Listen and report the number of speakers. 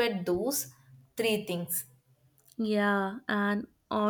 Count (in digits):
2